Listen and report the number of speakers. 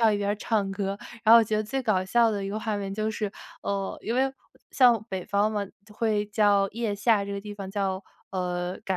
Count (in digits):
1